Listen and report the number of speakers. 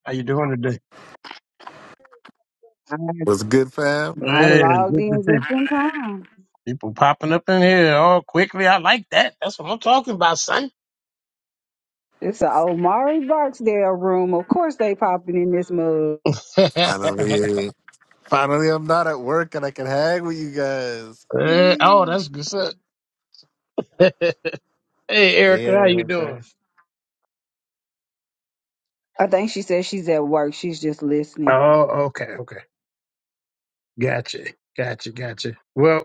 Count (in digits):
3